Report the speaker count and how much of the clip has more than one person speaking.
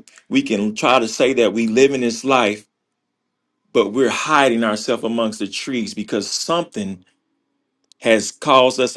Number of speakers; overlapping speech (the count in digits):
1, no overlap